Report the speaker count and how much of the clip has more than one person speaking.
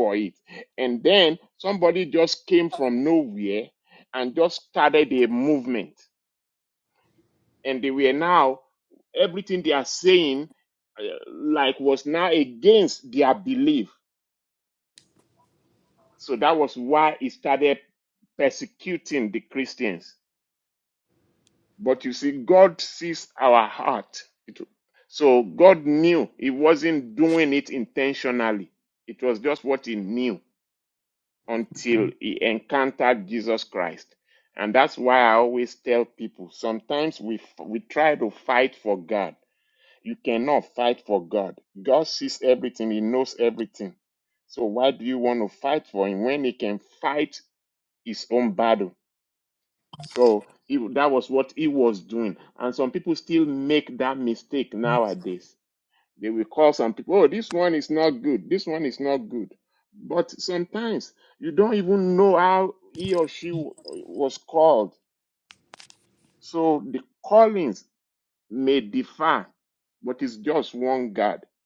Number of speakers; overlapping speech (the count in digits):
1, no overlap